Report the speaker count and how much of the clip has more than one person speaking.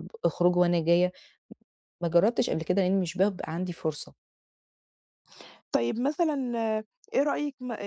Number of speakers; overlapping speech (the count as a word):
two, no overlap